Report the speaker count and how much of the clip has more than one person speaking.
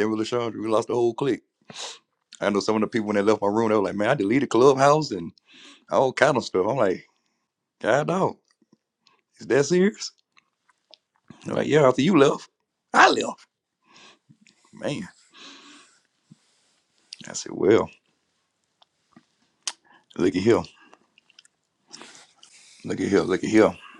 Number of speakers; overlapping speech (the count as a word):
one, no overlap